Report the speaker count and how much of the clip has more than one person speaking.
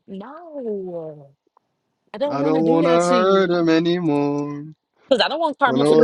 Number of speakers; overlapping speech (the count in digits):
2, about 27%